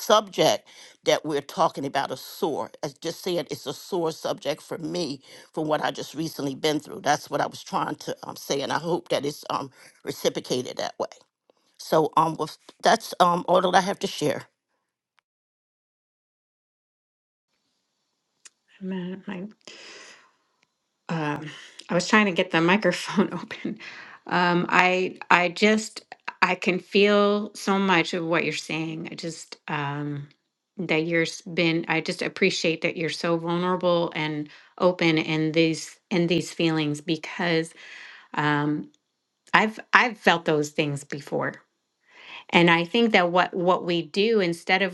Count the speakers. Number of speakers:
two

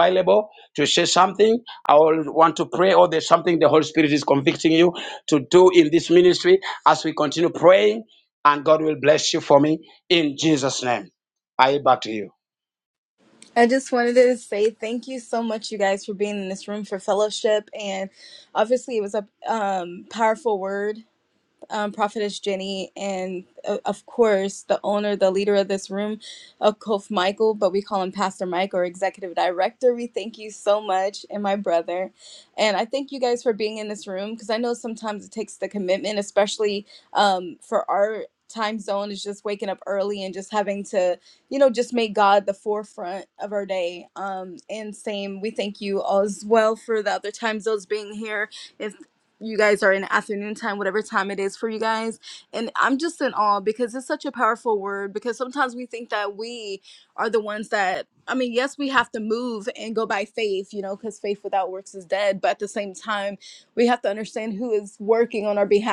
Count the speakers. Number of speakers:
two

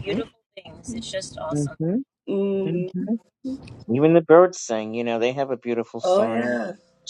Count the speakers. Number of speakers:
three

